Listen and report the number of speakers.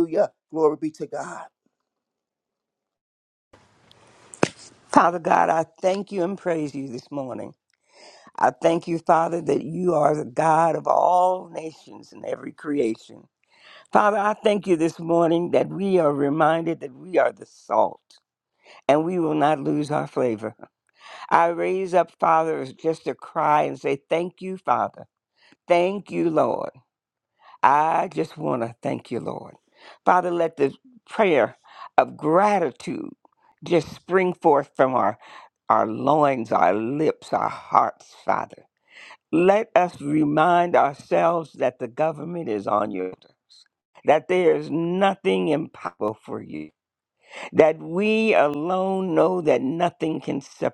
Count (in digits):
2